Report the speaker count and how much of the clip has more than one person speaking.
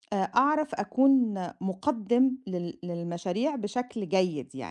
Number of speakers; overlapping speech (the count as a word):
one, no overlap